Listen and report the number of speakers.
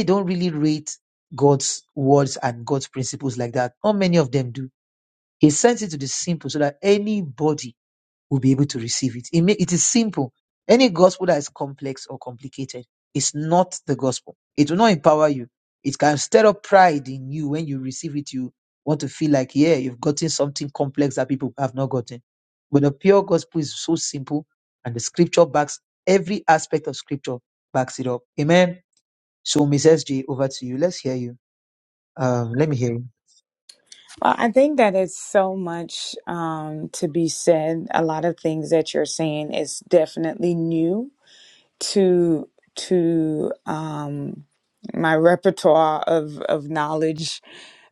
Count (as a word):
two